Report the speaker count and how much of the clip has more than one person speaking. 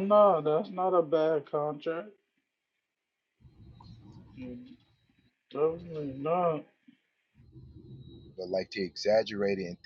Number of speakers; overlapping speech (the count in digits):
2, no overlap